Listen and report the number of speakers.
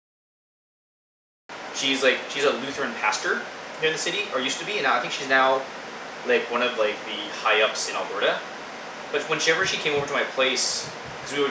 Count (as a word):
one